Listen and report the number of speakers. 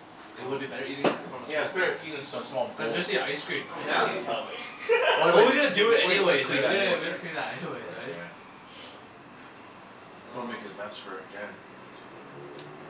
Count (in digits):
3